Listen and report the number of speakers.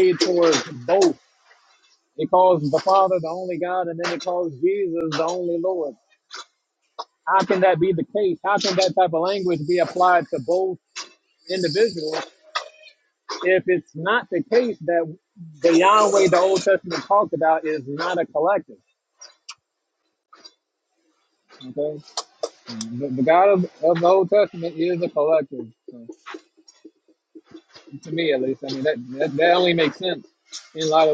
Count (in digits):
1